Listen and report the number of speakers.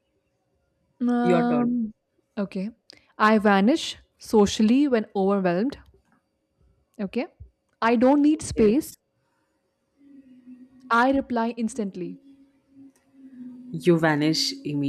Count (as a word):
two